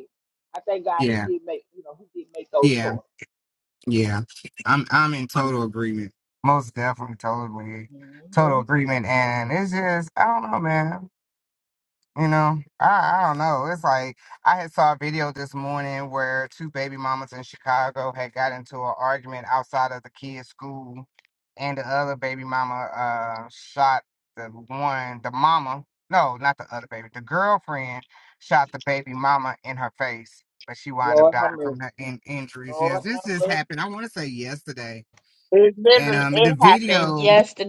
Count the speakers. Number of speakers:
3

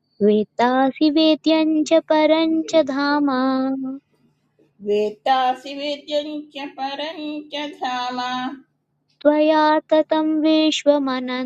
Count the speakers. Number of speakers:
2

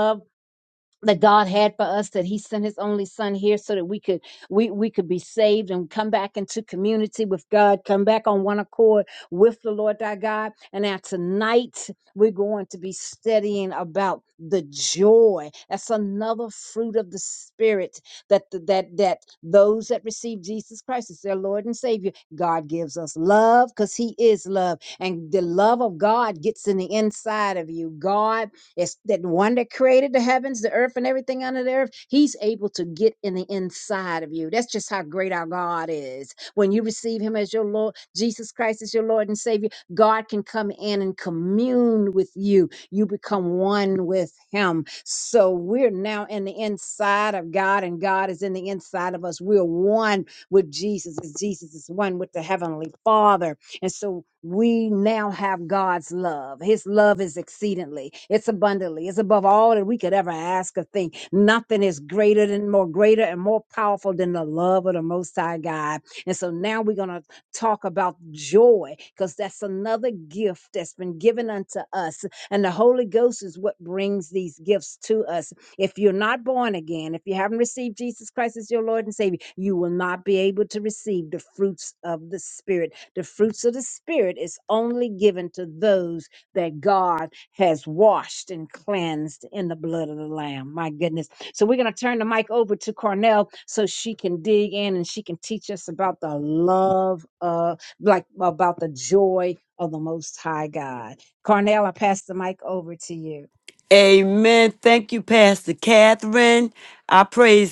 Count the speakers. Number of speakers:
2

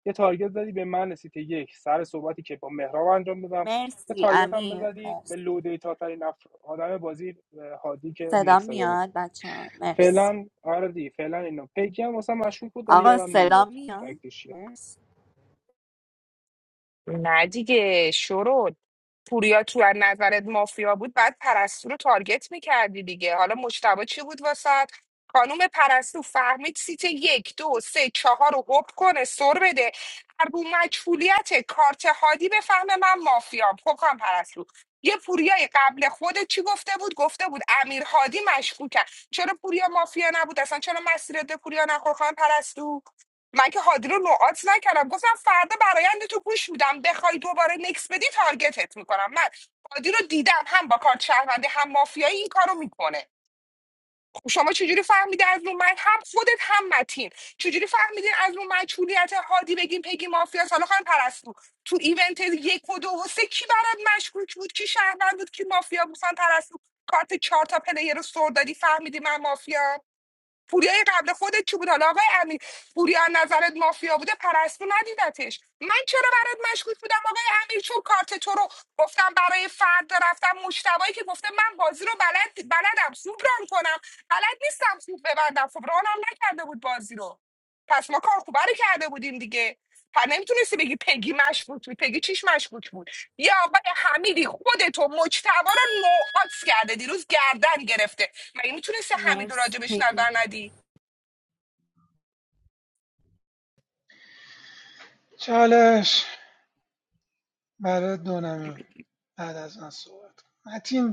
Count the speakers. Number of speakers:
4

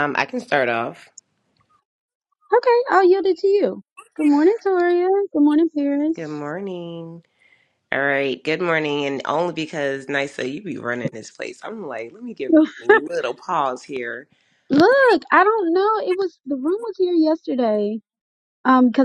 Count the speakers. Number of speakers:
2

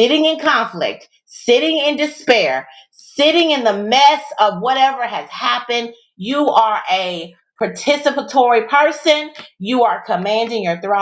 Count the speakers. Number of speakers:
1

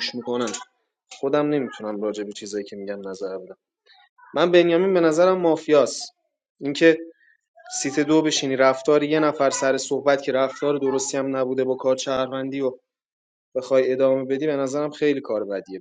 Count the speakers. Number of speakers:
1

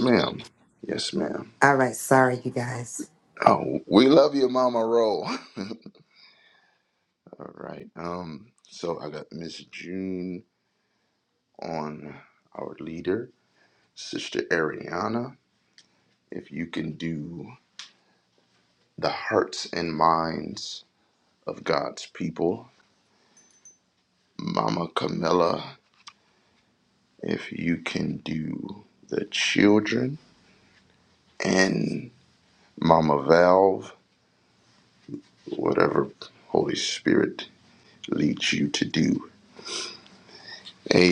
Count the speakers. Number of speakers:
2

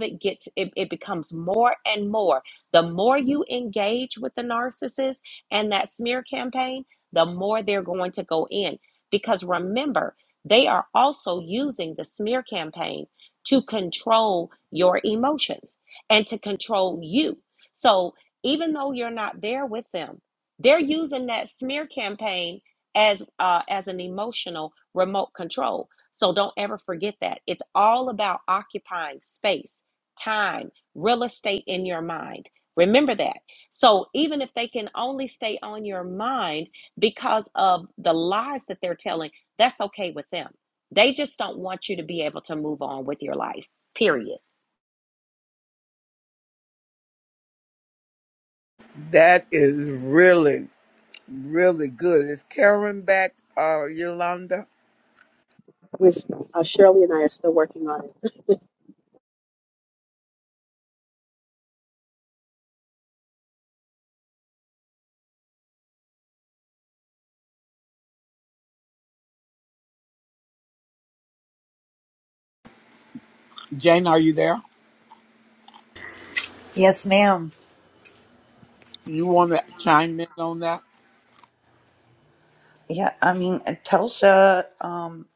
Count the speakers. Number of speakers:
4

